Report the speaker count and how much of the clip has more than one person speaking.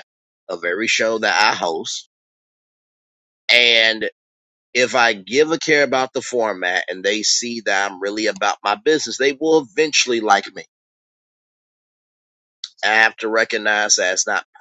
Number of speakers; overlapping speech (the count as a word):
one, no overlap